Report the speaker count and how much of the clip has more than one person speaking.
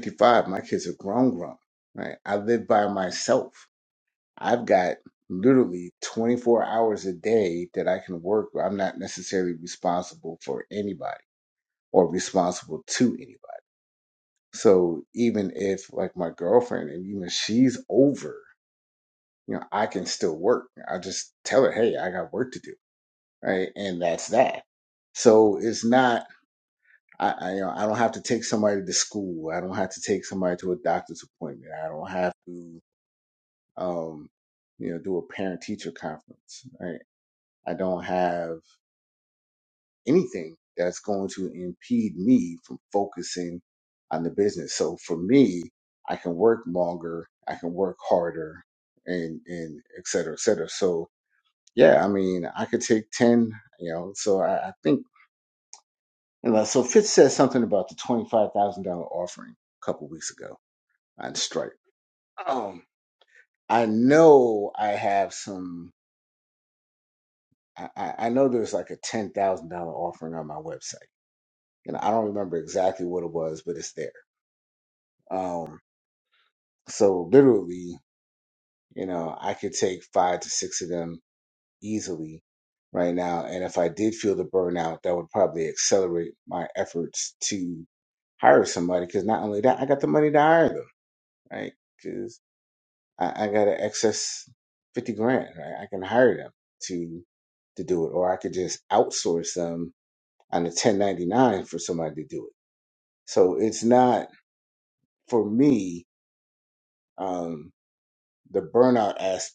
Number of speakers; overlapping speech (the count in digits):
1, no overlap